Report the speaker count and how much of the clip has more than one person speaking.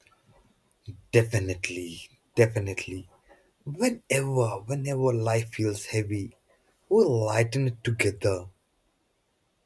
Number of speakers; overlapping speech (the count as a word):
one, no overlap